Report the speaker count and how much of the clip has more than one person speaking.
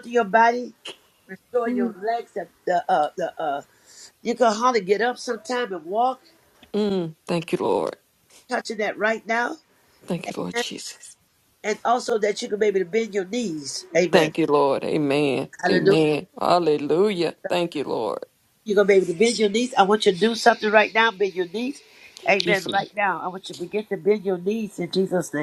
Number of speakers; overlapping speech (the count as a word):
two, about 5%